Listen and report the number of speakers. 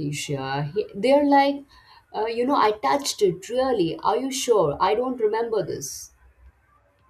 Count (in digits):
1